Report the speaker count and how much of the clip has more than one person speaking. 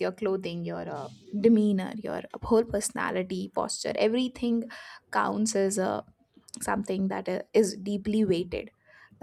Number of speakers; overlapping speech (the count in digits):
1, no overlap